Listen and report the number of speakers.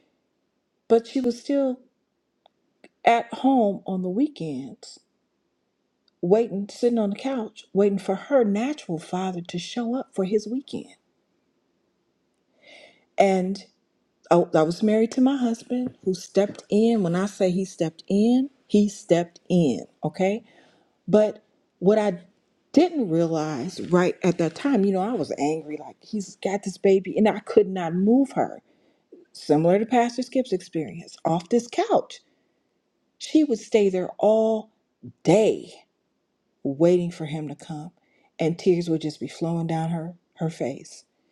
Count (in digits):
1